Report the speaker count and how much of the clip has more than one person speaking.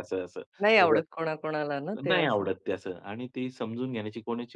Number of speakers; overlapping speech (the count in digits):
2, about 15%